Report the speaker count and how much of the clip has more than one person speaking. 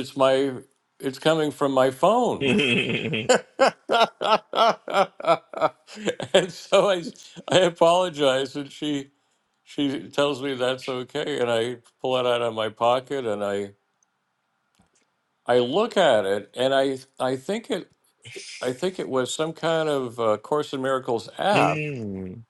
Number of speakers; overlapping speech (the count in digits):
2, about 2%